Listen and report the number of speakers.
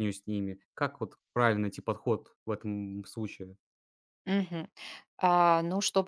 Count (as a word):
two